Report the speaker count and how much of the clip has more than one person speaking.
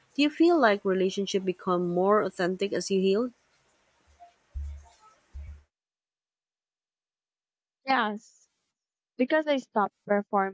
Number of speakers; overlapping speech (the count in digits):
2, no overlap